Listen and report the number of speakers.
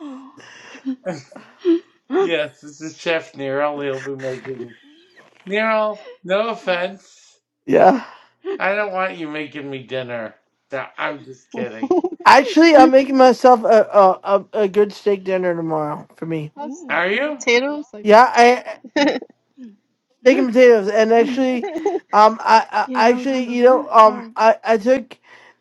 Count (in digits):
4